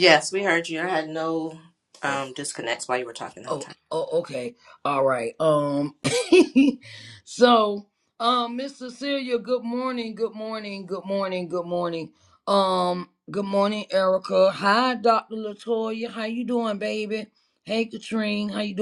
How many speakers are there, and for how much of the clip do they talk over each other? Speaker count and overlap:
2, about 1%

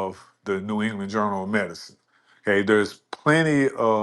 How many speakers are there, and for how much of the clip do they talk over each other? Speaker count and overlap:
1, no overlap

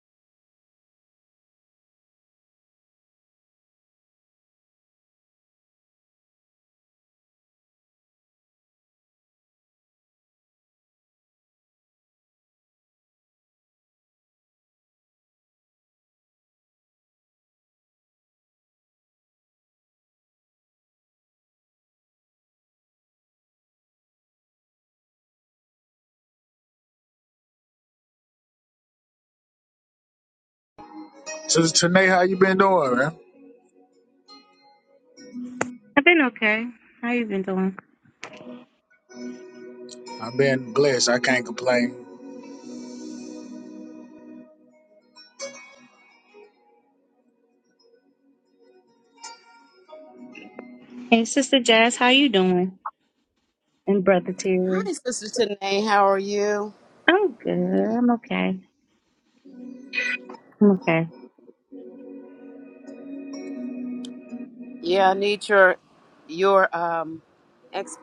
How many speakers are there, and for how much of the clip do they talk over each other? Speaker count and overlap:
3, under 1%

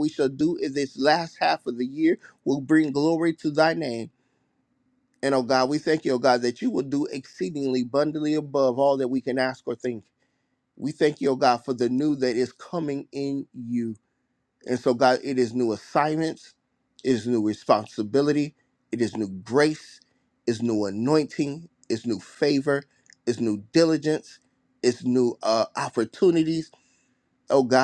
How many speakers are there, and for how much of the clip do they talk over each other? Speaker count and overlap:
1, no overlap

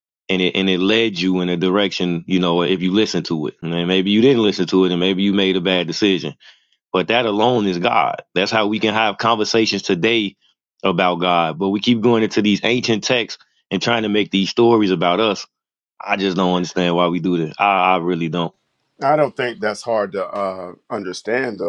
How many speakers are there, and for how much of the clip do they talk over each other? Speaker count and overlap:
2, no overlap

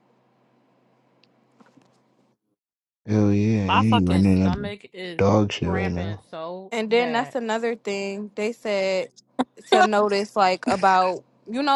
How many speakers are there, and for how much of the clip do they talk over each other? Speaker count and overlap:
3, about 18%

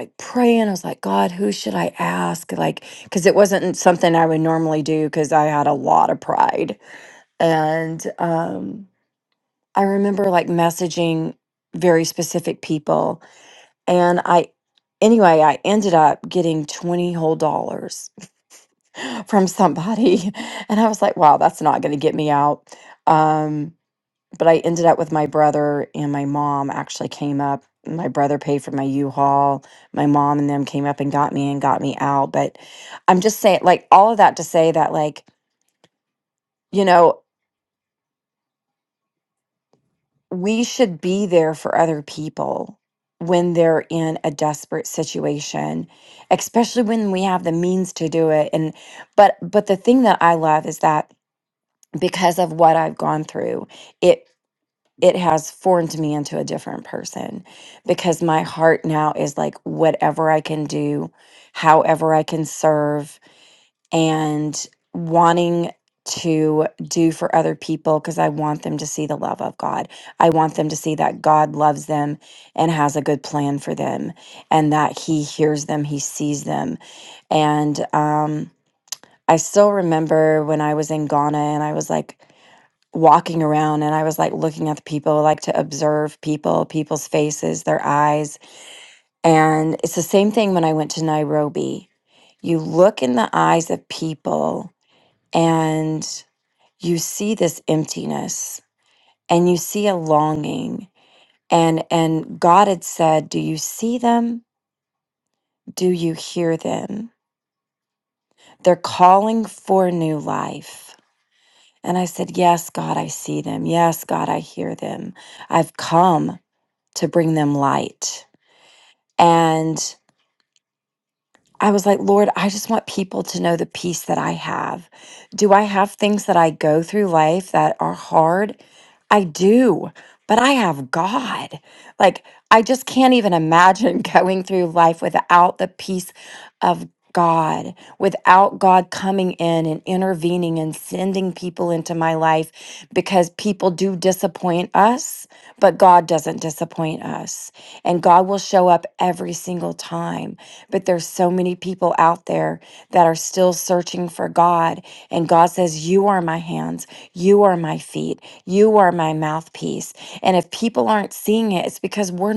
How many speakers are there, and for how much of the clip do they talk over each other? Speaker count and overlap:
1, no overlap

